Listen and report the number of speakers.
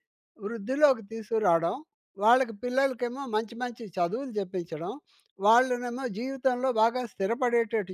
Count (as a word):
one